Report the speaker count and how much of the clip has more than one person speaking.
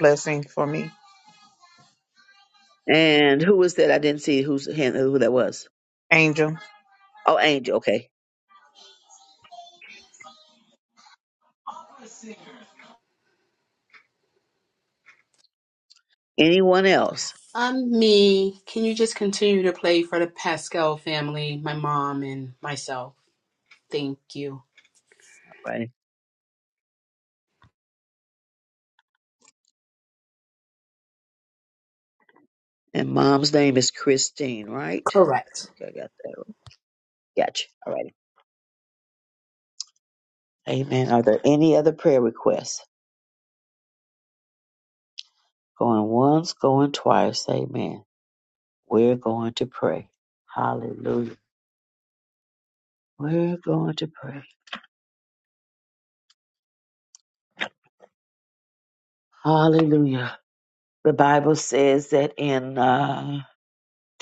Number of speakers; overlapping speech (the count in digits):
3, under 1%